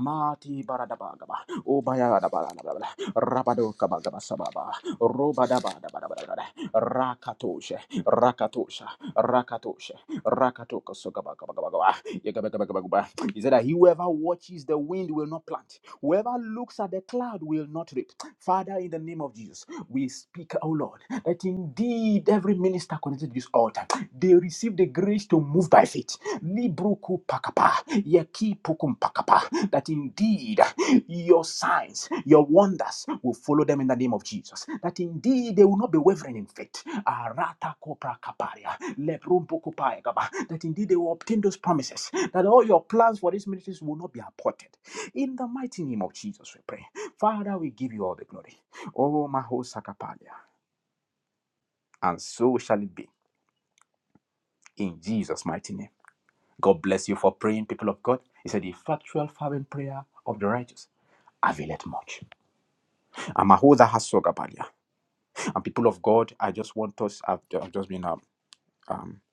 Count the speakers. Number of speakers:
1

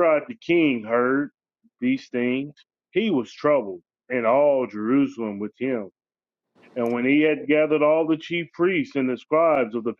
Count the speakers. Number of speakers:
1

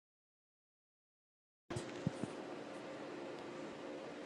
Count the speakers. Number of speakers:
0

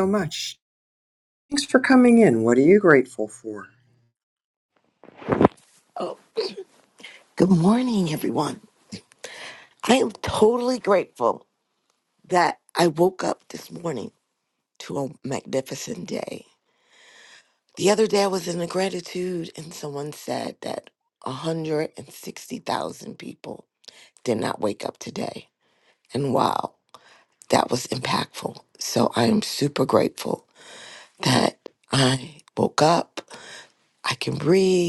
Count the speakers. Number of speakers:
2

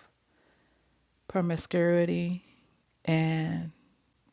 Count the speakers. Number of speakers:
1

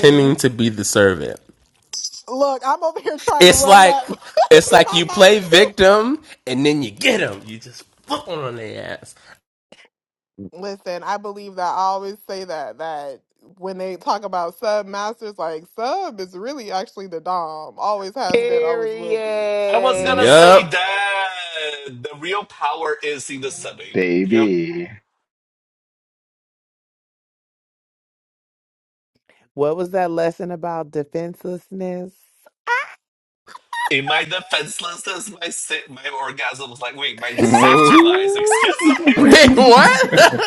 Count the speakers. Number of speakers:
5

